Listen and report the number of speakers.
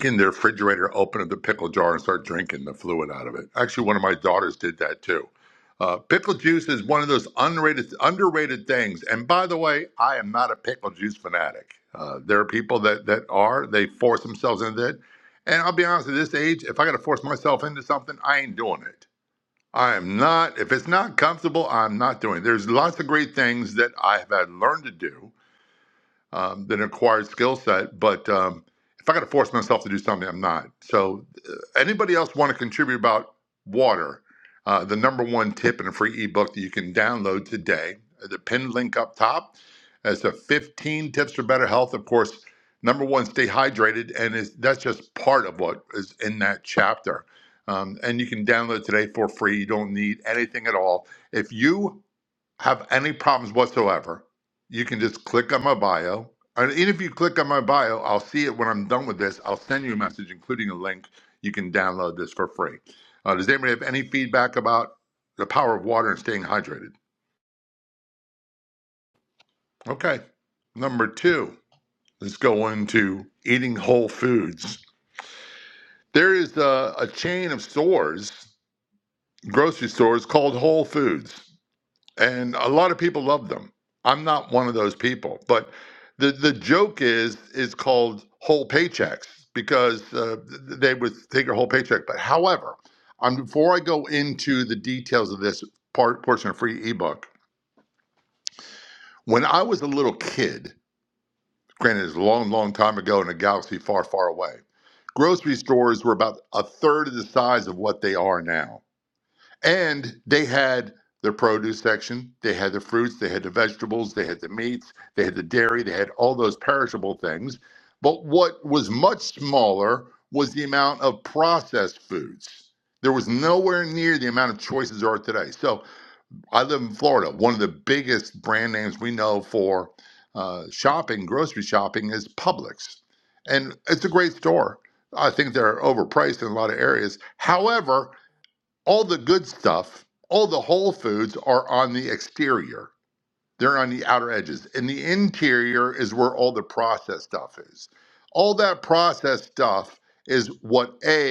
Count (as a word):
one